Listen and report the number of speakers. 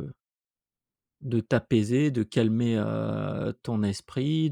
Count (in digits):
1